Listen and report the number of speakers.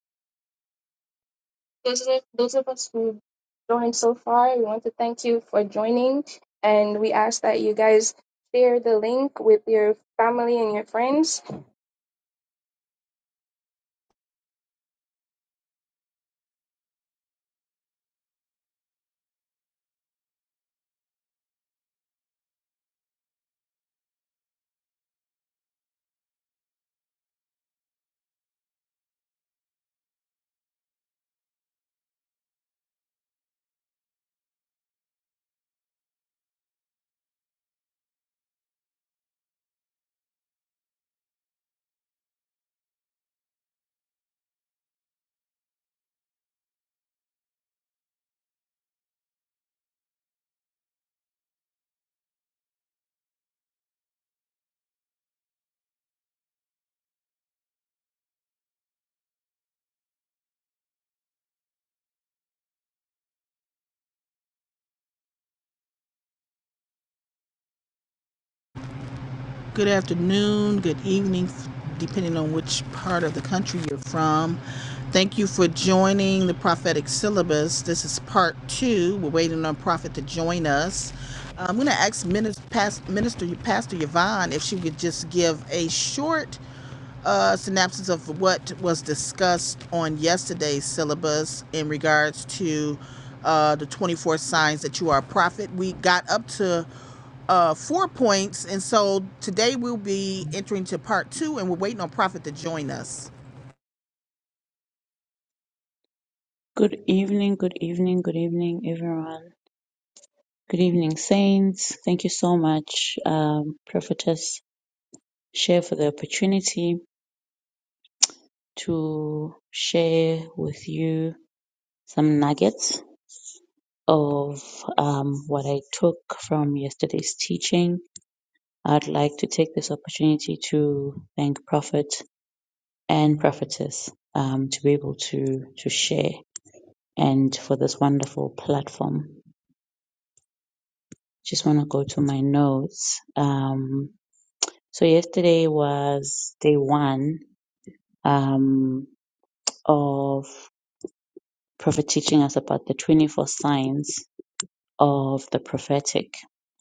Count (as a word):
three